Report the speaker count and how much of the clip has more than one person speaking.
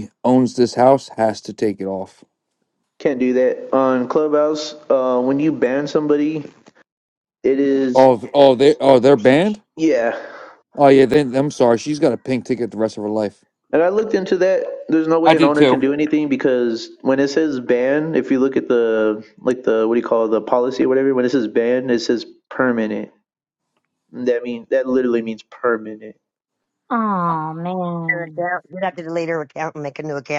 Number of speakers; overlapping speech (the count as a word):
four, about 3%